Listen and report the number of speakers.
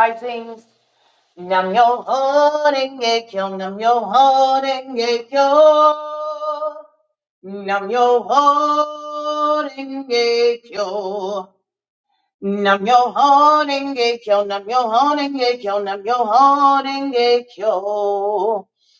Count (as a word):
one